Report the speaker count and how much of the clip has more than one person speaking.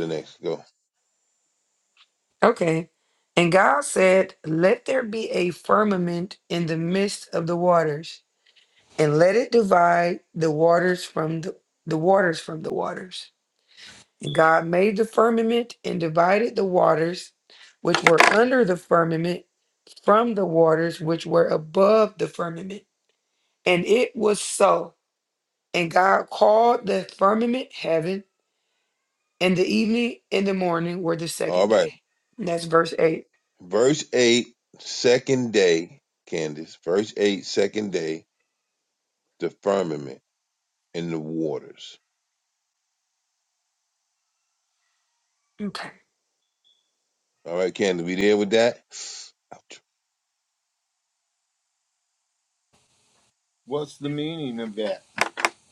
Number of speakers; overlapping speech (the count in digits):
3, about 1%